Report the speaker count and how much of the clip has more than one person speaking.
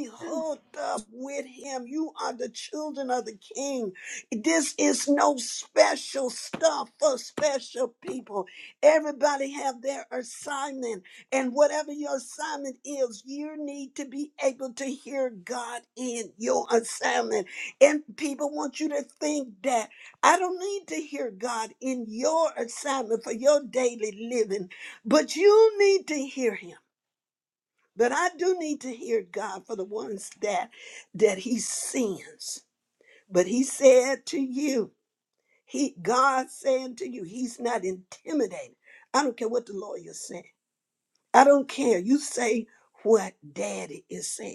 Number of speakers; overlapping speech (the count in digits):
1, no overlap